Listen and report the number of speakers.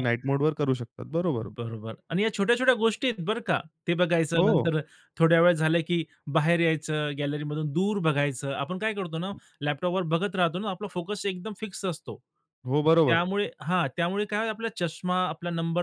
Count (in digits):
2